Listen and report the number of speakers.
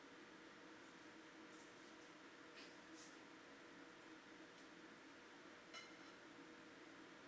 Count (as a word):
zero